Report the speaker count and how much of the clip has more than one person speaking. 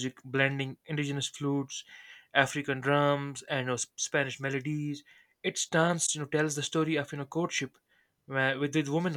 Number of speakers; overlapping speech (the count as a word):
one, no overlap